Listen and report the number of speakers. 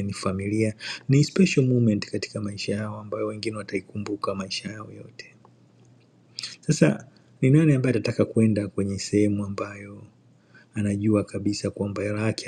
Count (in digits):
1